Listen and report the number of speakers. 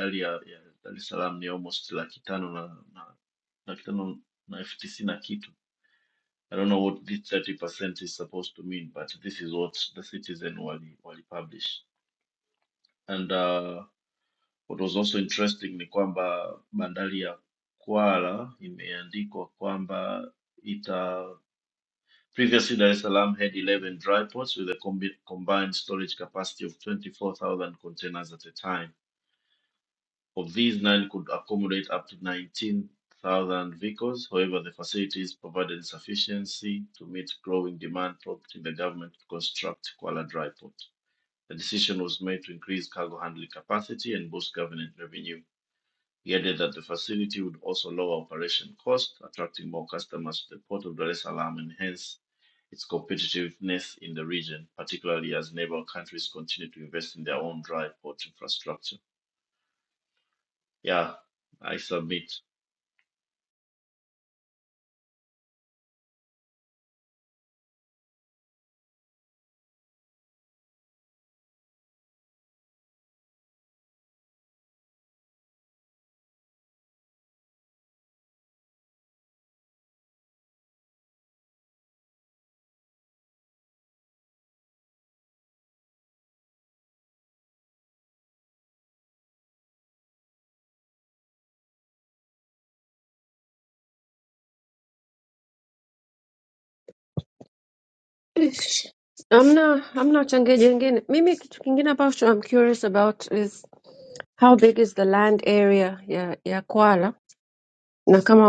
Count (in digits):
2